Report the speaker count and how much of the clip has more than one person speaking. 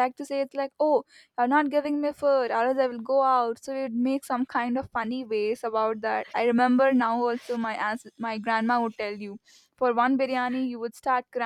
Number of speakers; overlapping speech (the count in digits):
1, no overlap